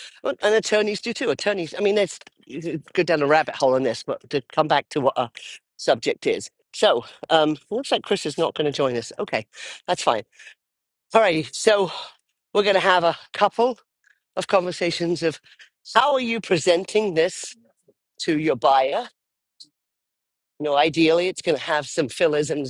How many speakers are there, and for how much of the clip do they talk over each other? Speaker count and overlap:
1, no overlap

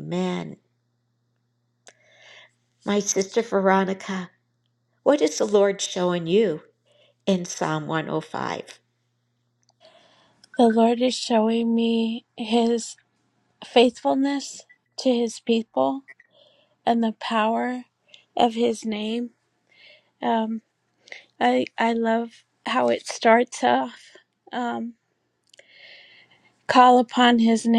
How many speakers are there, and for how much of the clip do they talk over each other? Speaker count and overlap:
2, no overlap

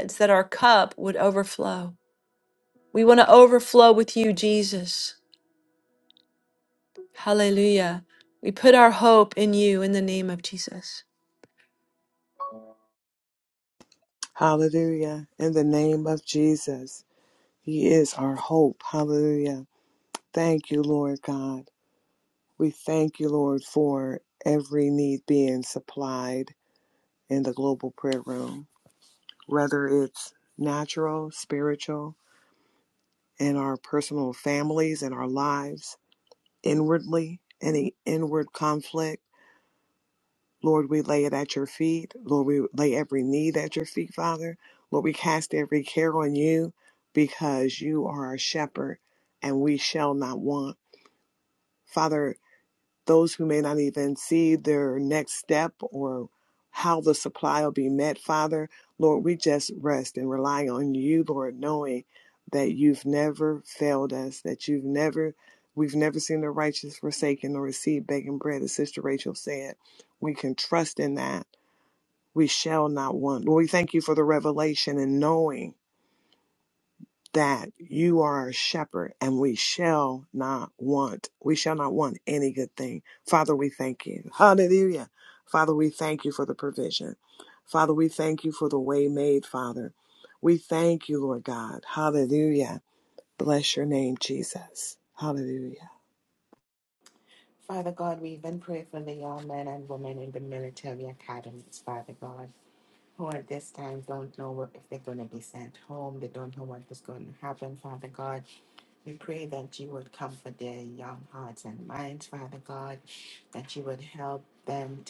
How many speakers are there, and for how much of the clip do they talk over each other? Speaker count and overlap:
3, no overlap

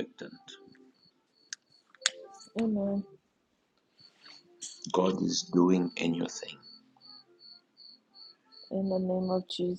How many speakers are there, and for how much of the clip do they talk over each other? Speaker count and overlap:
2, no overlap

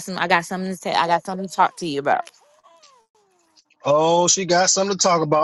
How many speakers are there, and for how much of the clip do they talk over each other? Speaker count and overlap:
2, no overlap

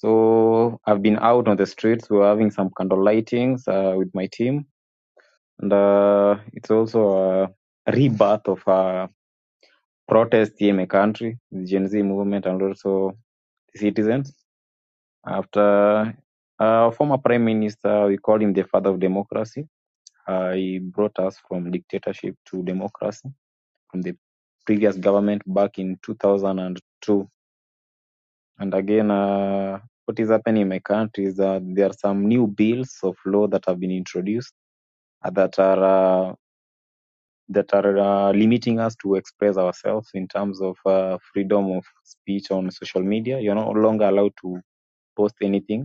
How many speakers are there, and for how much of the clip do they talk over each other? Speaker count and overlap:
1, no overlap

